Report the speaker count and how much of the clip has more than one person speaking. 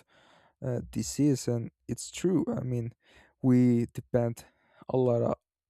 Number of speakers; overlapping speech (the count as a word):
one, no overlap